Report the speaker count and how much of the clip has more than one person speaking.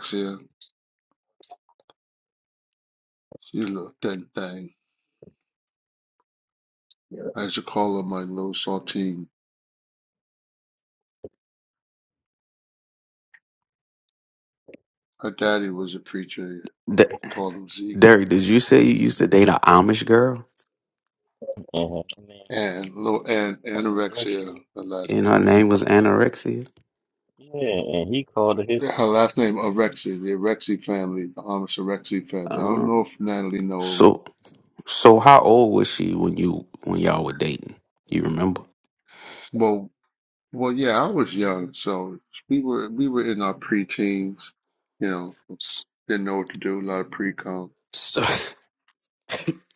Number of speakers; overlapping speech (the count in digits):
3, about 7%